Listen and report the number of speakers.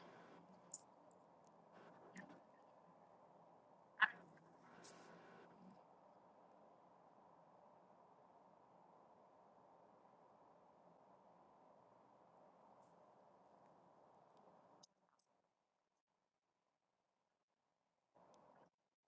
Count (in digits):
0